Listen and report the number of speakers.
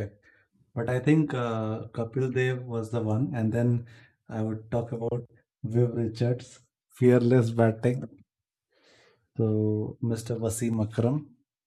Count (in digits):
1